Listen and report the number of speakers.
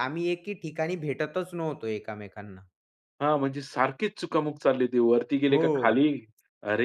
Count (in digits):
2